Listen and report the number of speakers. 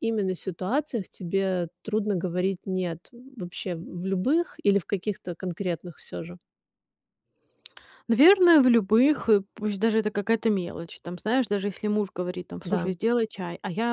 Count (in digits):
2